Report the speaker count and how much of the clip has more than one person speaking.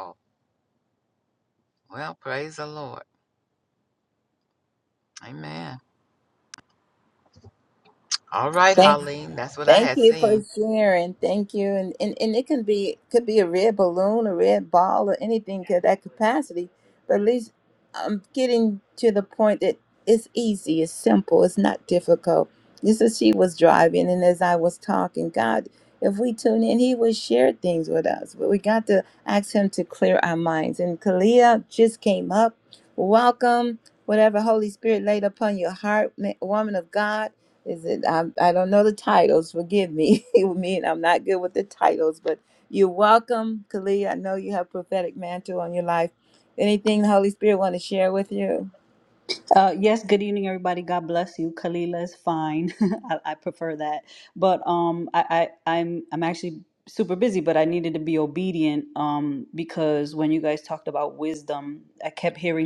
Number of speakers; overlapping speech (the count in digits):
3, about 2%